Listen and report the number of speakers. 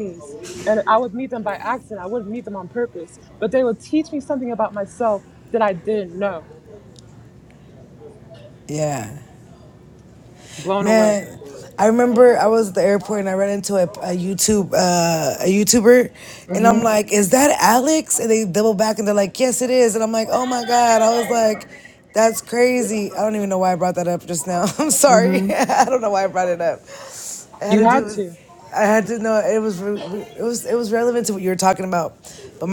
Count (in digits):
2